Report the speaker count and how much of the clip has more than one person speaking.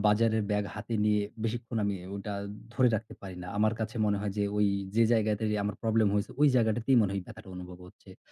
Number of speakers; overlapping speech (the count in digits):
1, no overlap